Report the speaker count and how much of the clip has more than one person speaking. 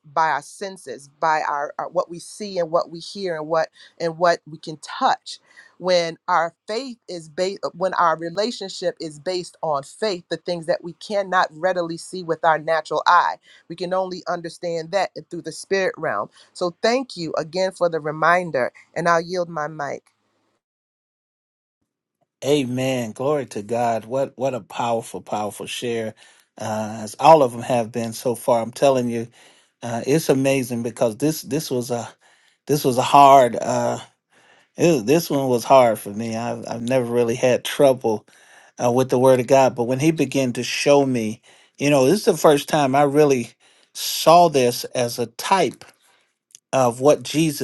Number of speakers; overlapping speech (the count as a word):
two, no overlap